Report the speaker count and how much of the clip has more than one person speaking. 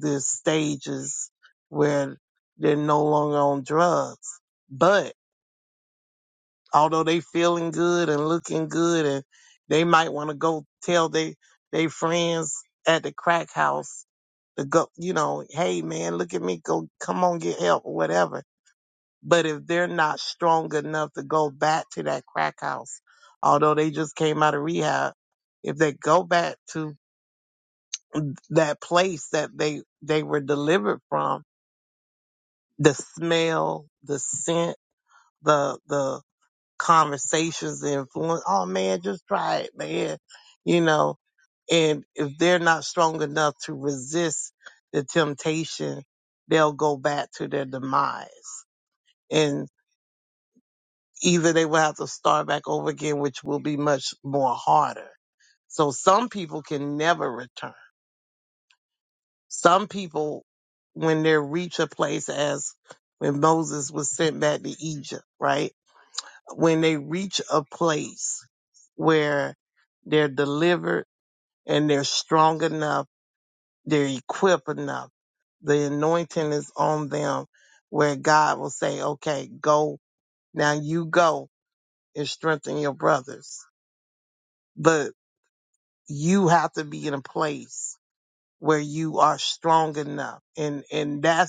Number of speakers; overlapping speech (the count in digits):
1, no overlap